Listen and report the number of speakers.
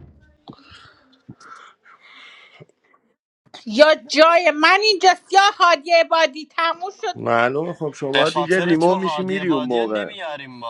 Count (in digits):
3